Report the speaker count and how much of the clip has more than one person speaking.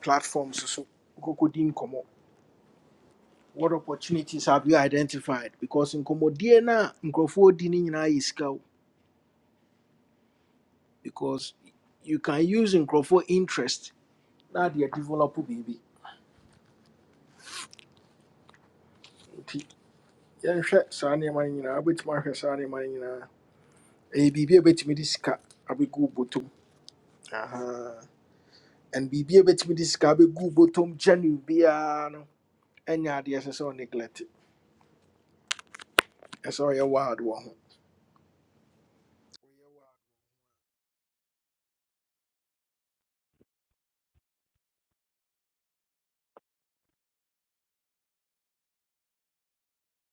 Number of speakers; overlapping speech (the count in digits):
1, no overlap